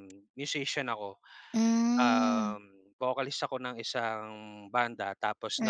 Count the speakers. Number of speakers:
2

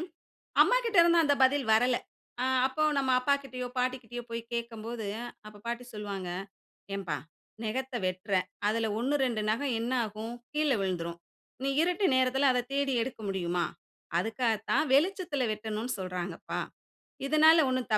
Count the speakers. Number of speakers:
1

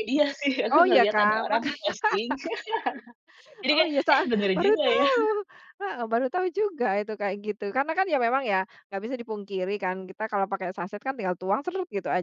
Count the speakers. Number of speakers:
2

